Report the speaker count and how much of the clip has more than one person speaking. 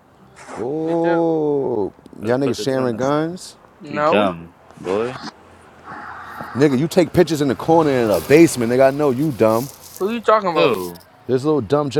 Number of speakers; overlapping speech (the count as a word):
three, about 15%